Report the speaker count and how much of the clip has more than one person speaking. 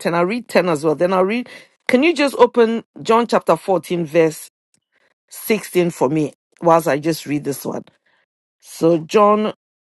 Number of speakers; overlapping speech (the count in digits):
1, no overlap